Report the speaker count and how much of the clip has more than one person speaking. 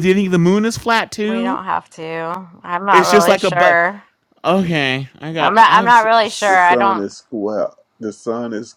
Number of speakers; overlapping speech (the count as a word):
three, about 27%